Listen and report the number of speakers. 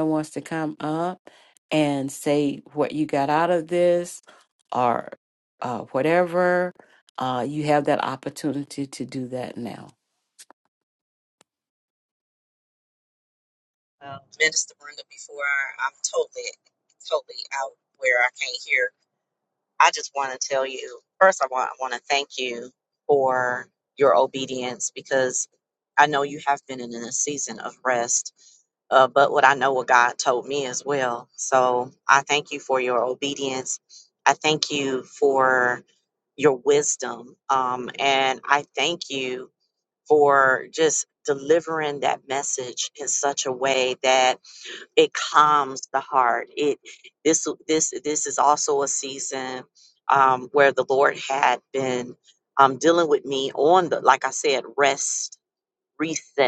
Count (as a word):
two